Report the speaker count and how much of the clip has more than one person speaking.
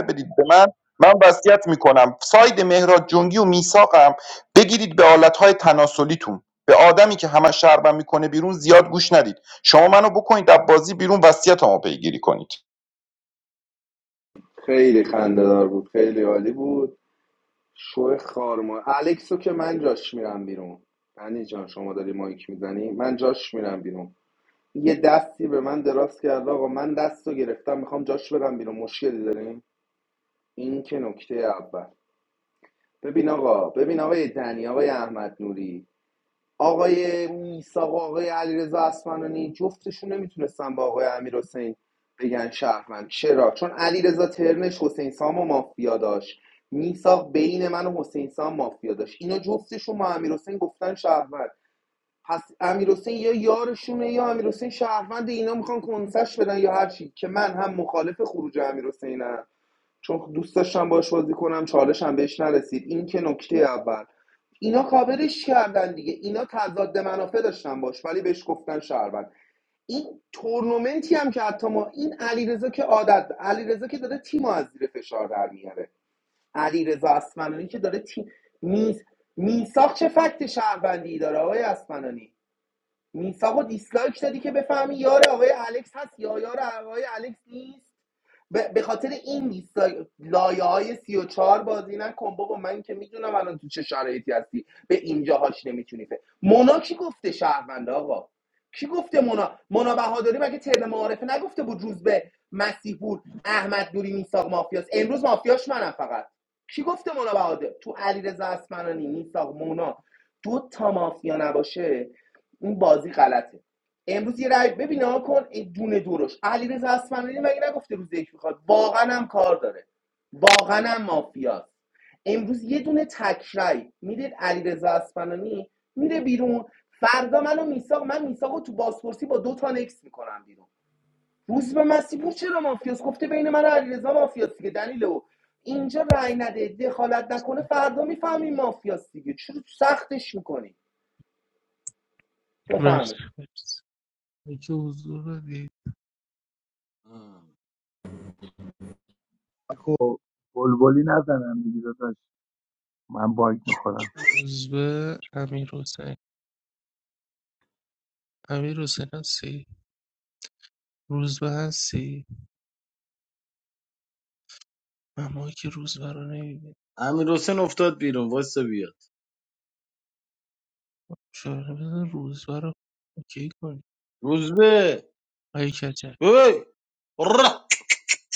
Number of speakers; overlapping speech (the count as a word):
five, under 1%